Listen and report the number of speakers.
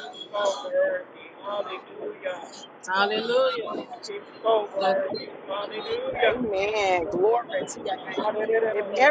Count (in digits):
3